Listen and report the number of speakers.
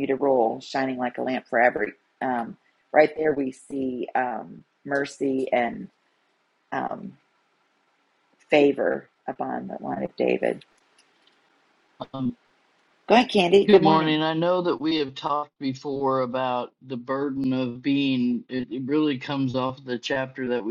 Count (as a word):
two